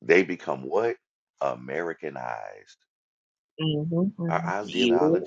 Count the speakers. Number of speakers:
2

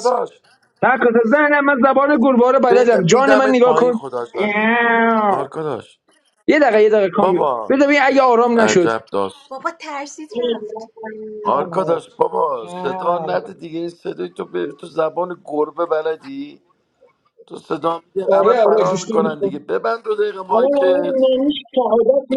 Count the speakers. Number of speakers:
3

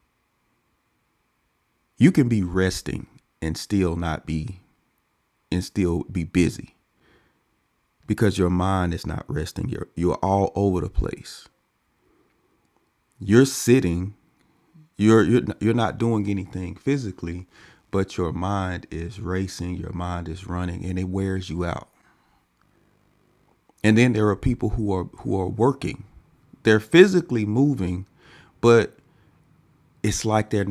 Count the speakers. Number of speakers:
1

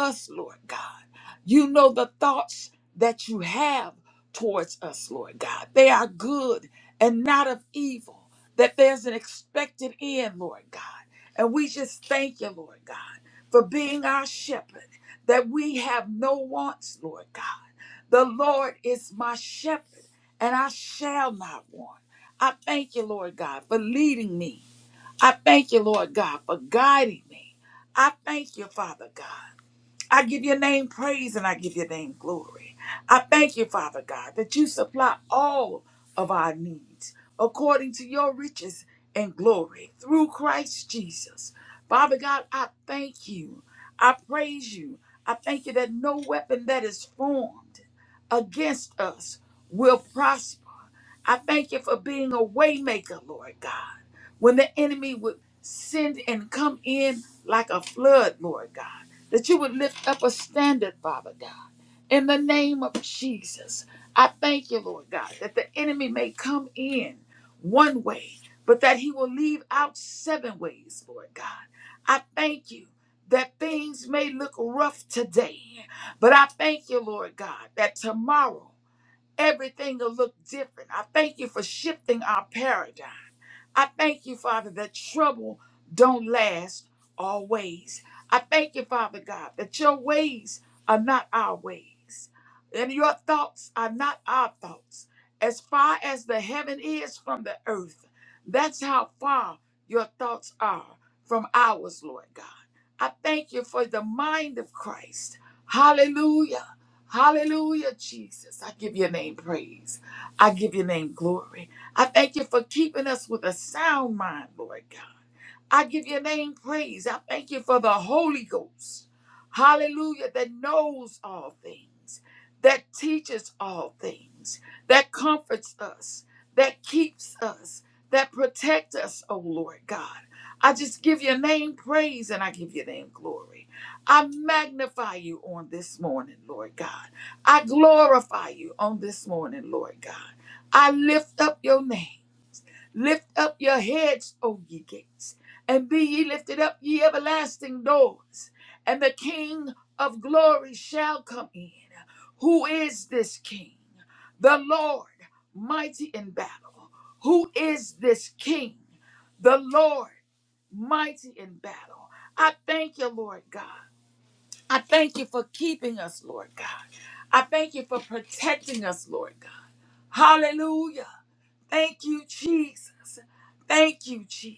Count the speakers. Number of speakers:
1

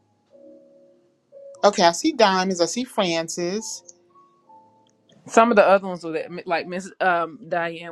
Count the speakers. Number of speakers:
2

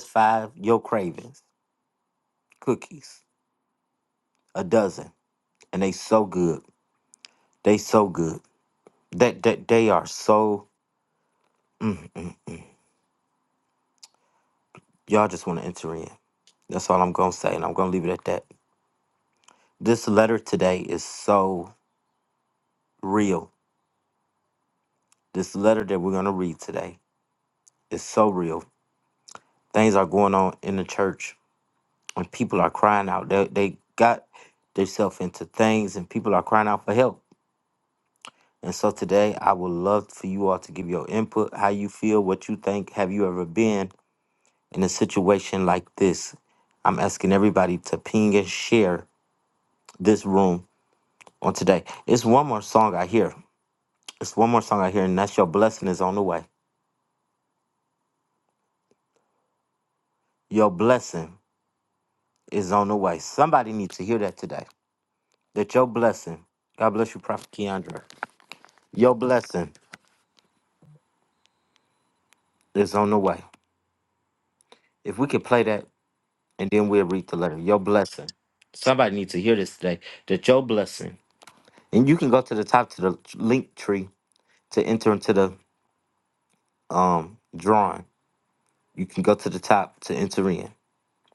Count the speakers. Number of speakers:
1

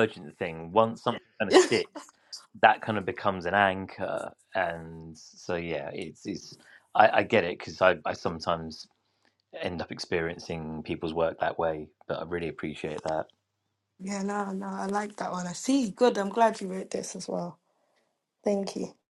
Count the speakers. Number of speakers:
2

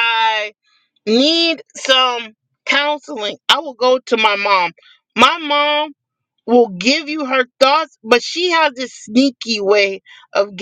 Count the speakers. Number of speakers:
1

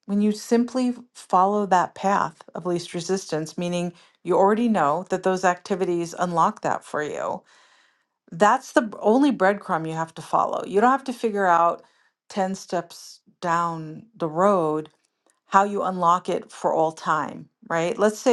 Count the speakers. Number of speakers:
1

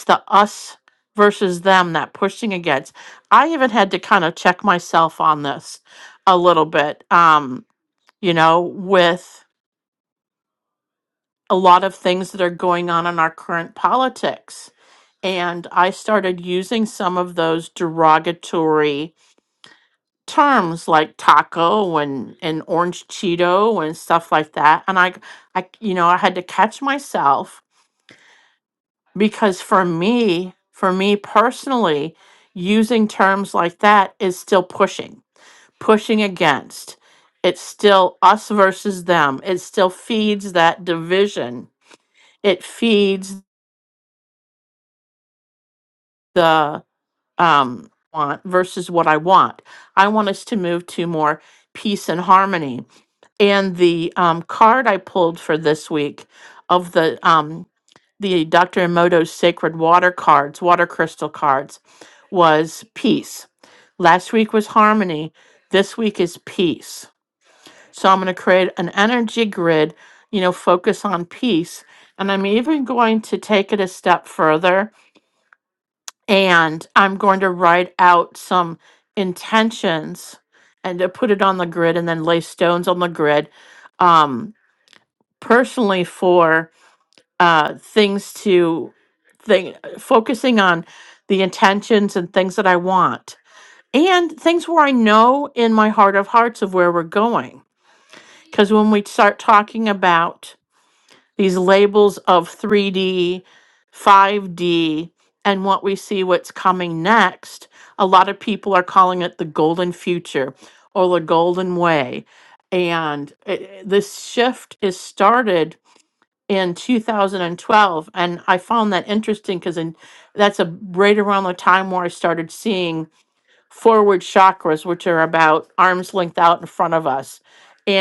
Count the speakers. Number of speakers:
1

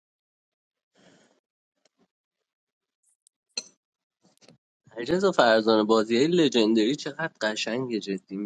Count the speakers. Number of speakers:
1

